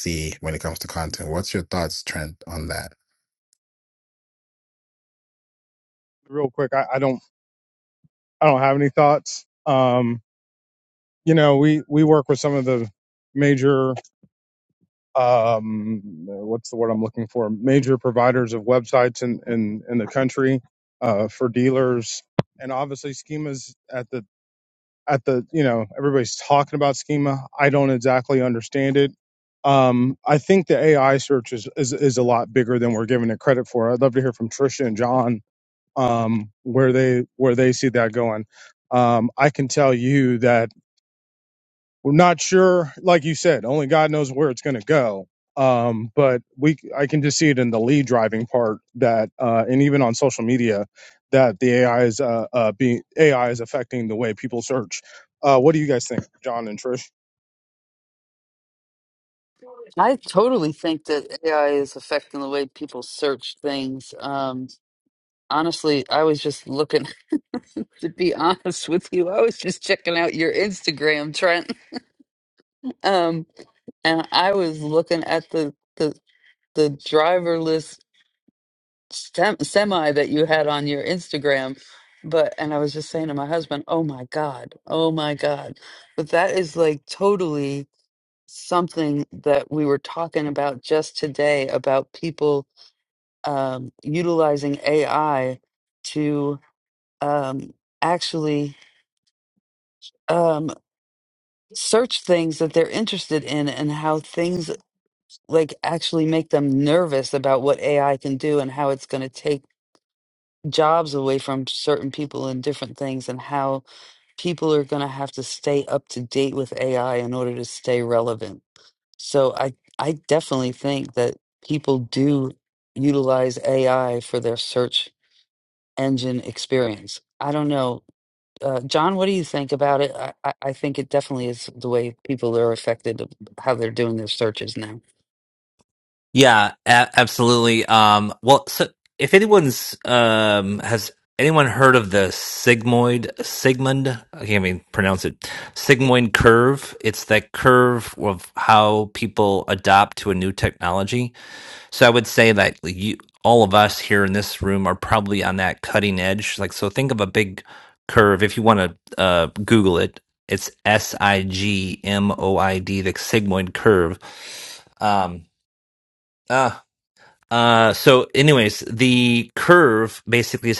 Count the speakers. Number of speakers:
4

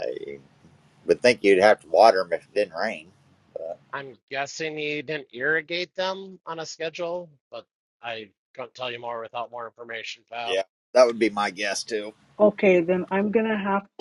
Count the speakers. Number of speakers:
3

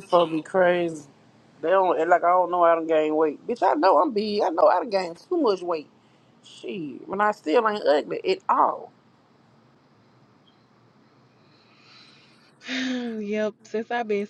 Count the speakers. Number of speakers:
2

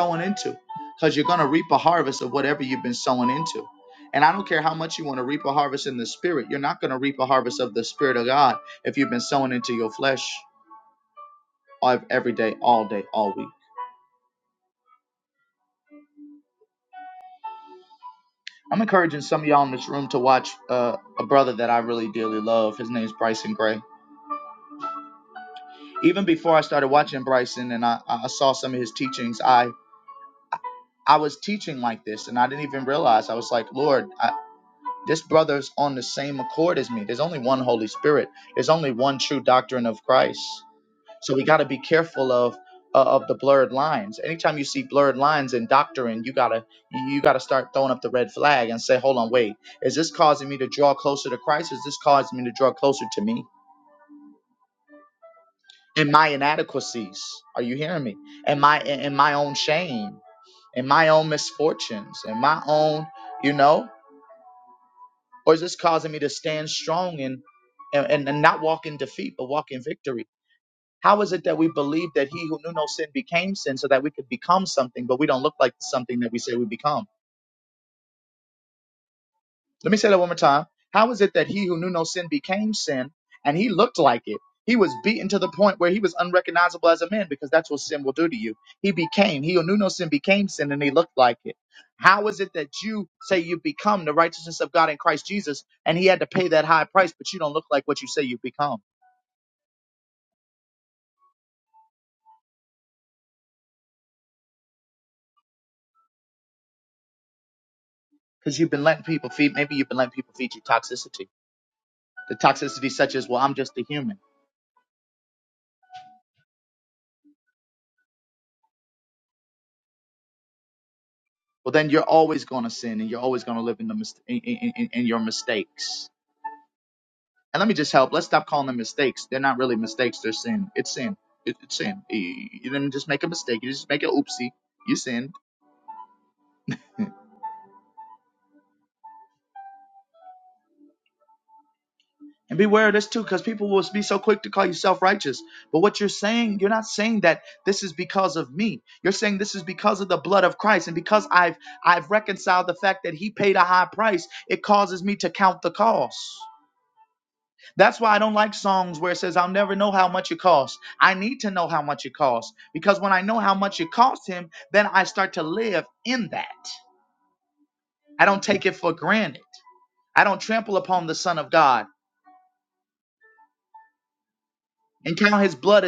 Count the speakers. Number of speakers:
1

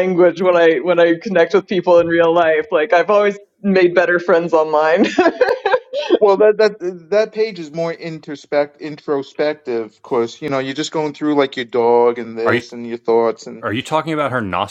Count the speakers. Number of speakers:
3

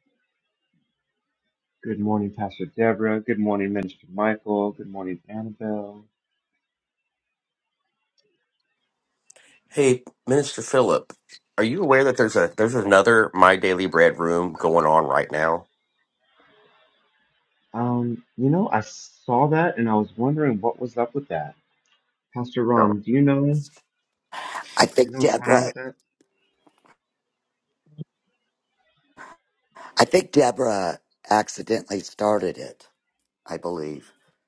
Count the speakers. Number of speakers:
3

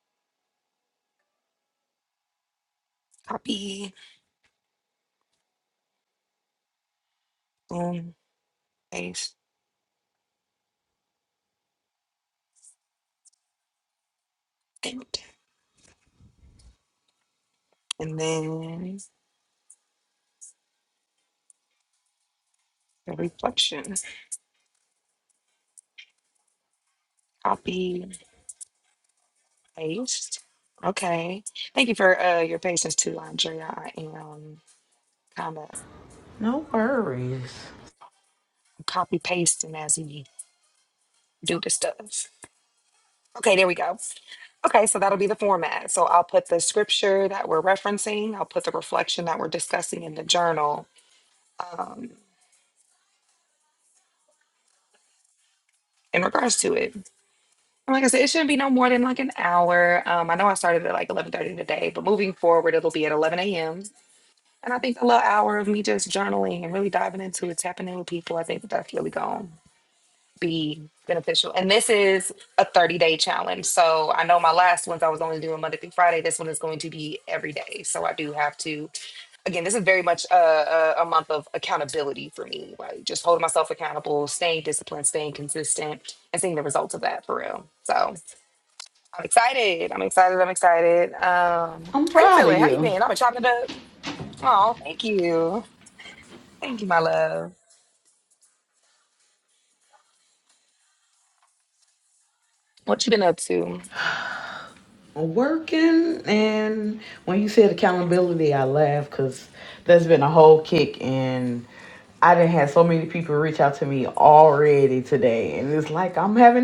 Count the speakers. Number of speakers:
2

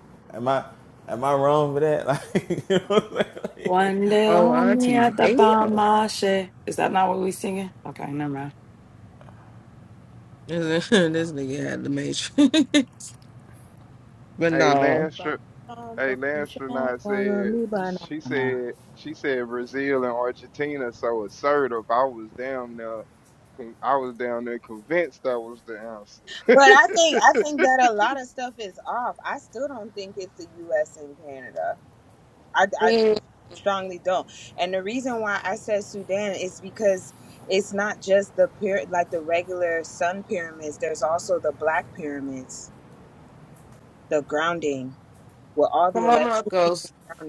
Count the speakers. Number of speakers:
5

